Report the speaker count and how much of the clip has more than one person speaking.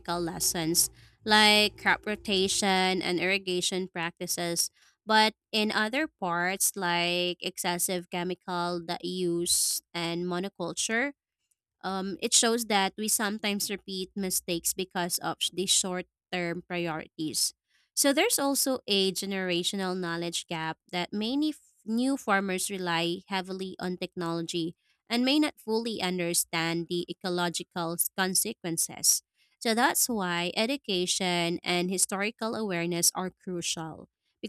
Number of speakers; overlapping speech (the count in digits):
1, no overlap